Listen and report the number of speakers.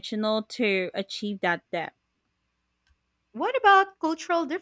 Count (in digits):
2